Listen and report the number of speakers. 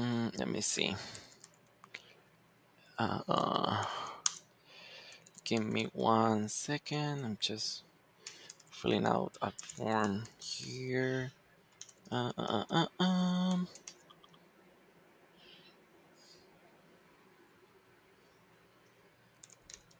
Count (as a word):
one